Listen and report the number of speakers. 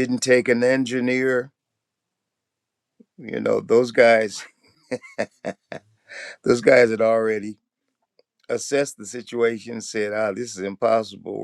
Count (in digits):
1